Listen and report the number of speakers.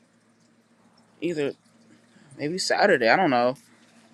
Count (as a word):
one